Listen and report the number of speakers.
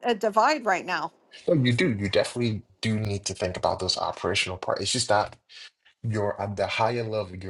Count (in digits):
2